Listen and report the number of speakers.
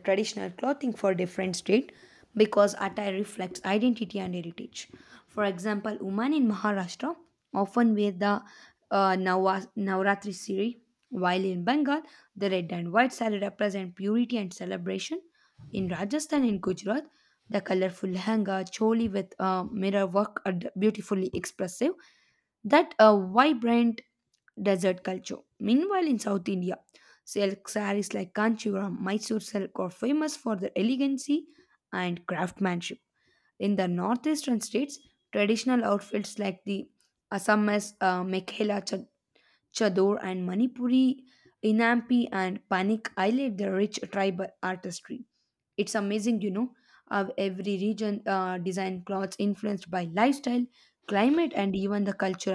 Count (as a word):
one